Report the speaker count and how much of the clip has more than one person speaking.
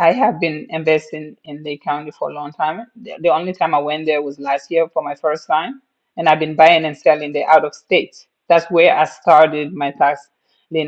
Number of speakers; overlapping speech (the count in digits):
1, no overlap